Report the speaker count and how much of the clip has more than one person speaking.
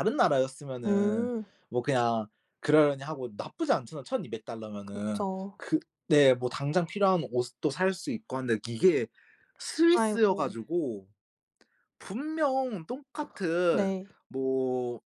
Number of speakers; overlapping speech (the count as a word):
two, about 10%